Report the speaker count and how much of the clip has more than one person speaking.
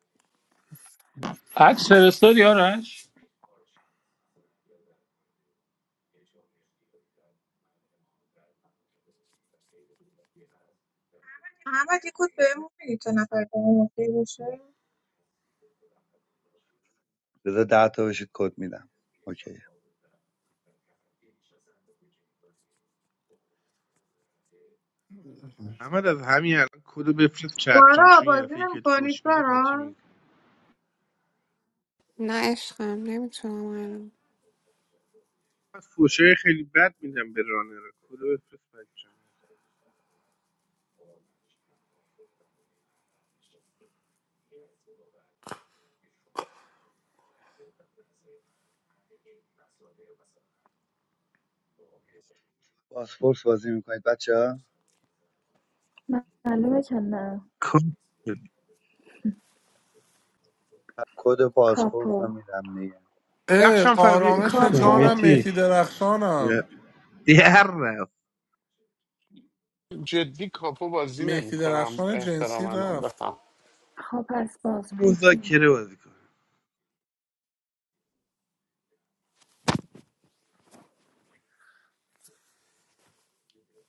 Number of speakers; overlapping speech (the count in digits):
8, about 8%